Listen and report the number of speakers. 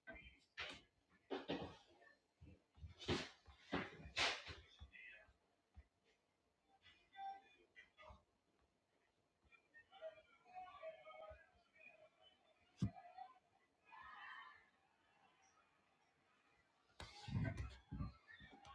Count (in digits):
0